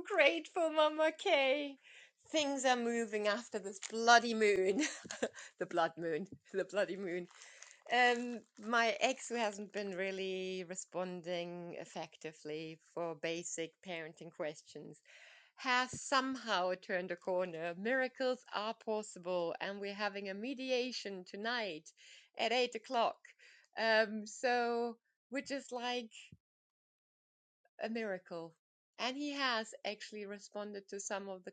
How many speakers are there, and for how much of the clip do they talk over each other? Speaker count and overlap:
one, no overlap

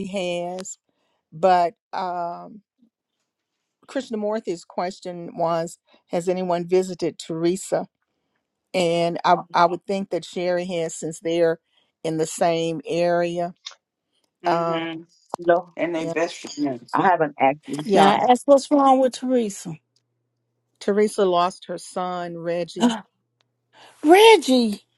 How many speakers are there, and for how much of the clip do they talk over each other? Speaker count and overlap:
four, about 3%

